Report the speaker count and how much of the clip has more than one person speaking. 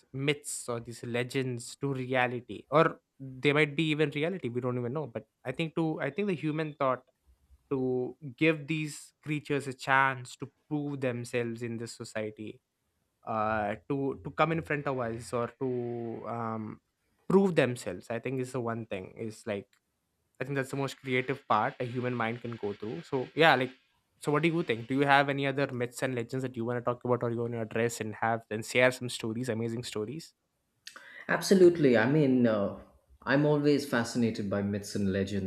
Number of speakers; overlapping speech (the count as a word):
two, no overlap